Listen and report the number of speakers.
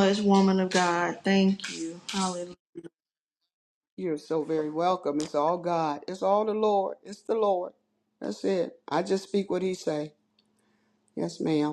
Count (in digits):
2